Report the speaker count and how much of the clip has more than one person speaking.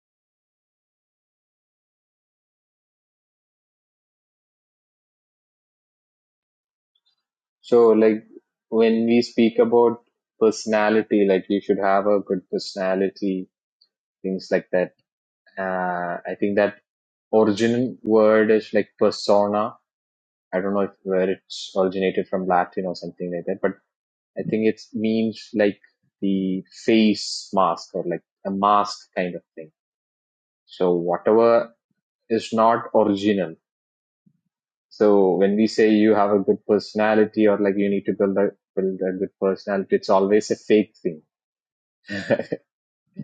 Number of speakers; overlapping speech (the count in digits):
1, no overlap